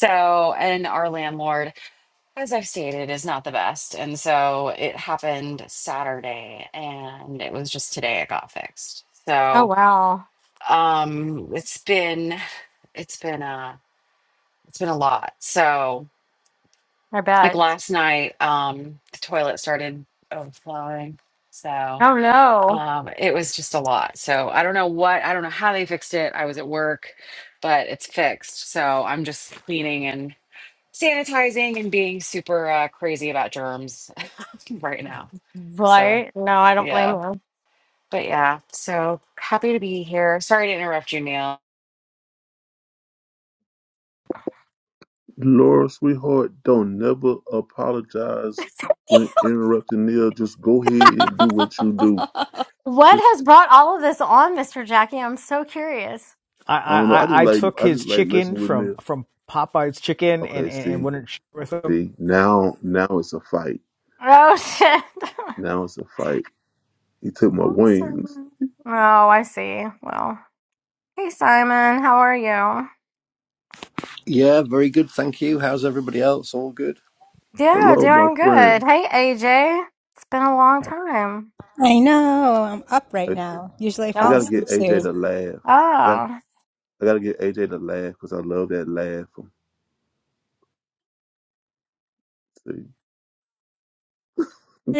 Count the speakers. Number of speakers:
6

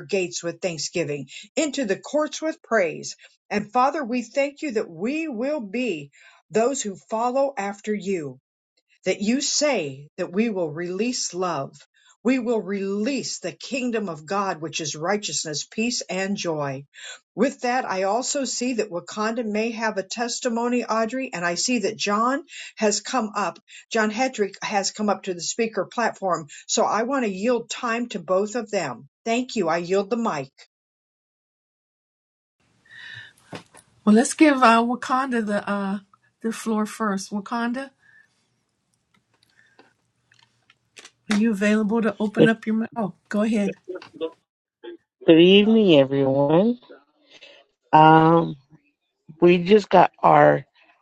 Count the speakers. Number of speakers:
3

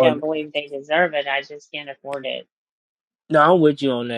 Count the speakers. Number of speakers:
2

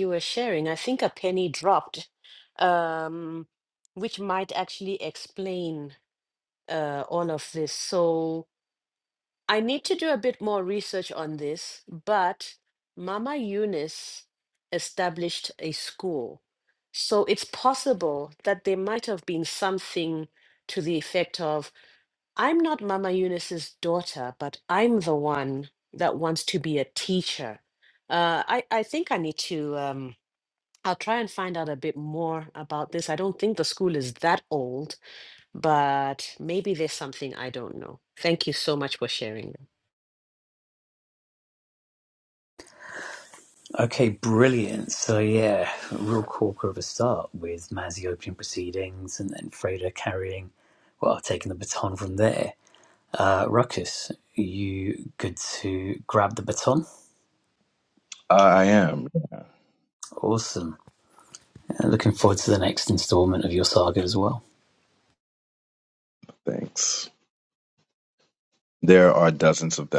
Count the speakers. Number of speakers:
3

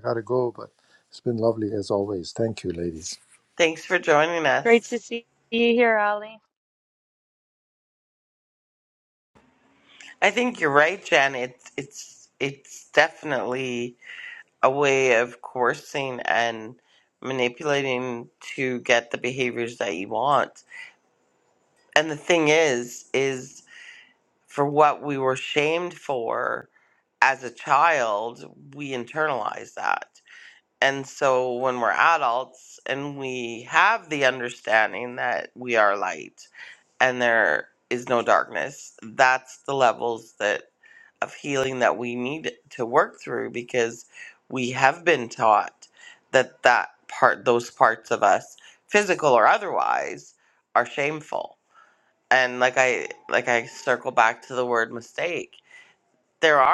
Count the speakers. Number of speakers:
3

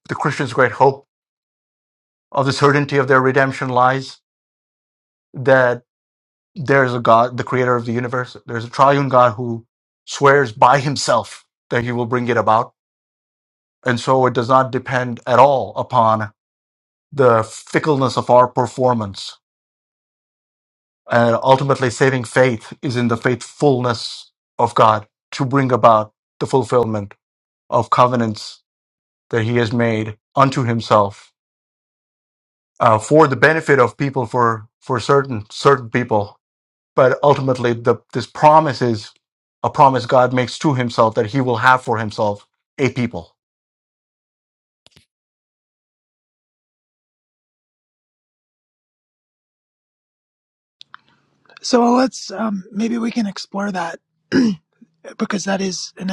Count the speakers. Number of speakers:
2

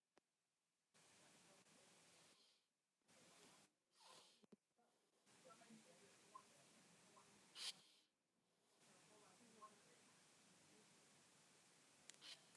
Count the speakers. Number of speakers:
0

